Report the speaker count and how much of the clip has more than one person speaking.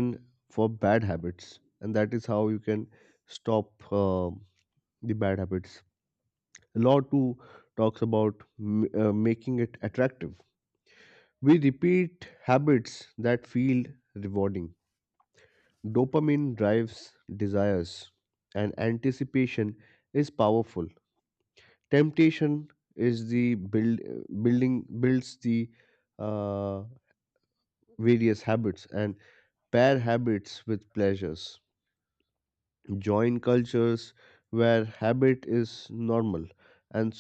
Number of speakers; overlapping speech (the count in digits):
1, no overlap